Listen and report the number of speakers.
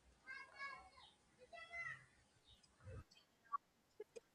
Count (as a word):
zero